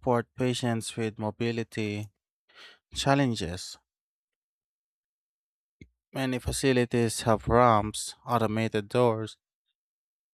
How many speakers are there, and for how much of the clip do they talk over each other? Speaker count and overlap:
1, no overlap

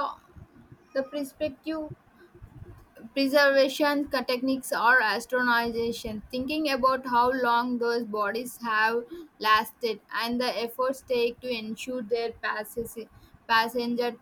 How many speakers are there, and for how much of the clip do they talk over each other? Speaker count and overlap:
1, no overlap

